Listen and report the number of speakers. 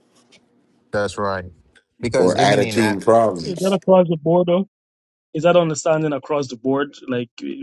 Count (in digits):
3